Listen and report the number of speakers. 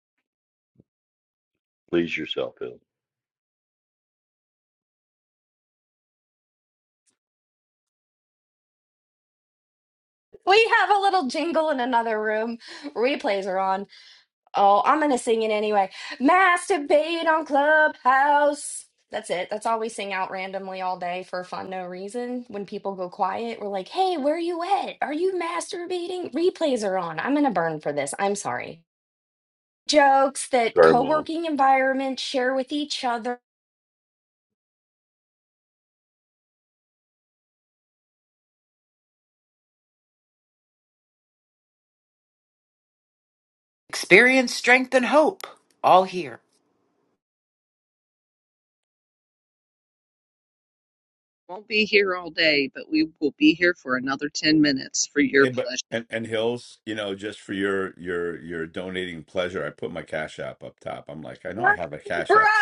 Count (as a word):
five